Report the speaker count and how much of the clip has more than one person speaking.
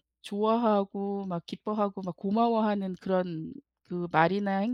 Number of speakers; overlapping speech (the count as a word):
one, no overlap